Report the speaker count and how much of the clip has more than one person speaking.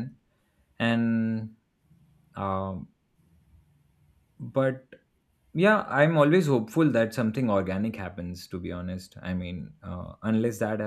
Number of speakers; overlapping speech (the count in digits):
1, no overlap